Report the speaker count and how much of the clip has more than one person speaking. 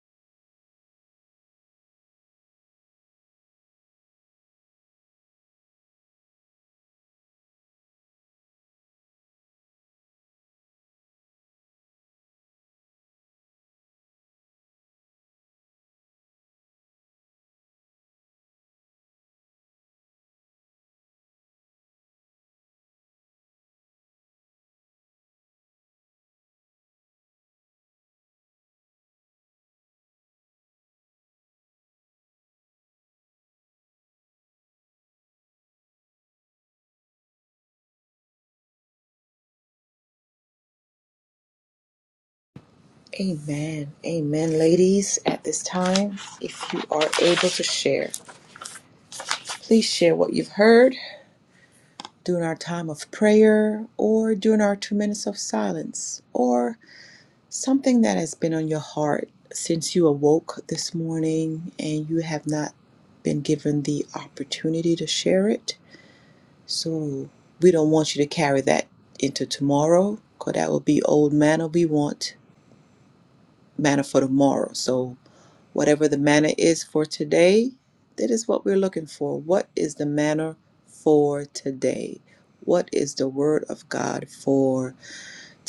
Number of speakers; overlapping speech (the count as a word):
one, no overlap